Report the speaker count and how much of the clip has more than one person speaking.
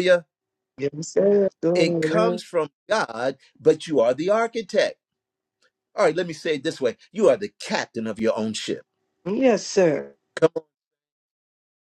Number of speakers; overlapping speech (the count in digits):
2, about 5%